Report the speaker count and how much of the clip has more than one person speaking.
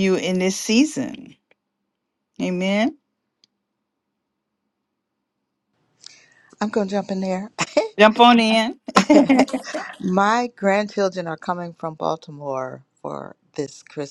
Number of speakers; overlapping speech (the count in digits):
2, no overlap